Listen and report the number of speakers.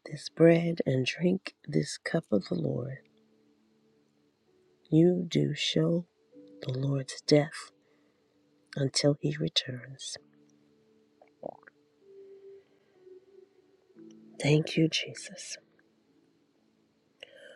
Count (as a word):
one